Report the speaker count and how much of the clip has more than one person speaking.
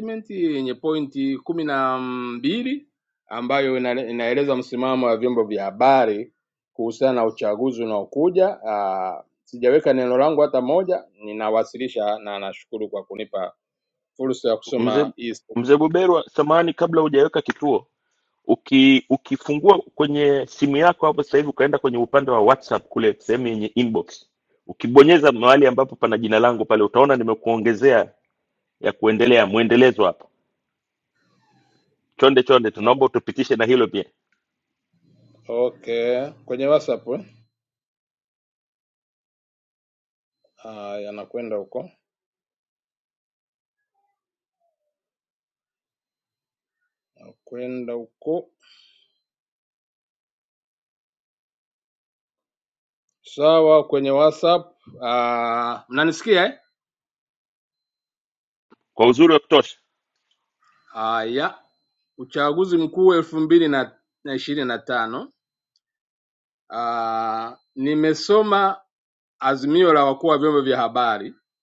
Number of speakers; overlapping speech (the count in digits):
2, under 1%